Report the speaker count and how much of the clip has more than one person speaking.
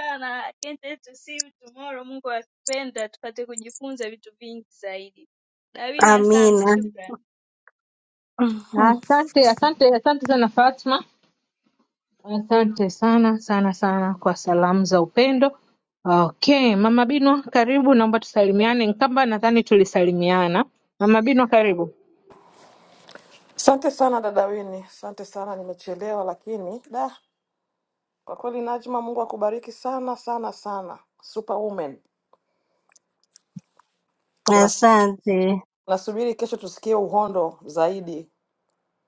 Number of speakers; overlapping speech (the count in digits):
4, about 2%